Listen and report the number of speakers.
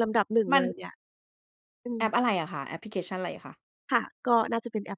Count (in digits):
2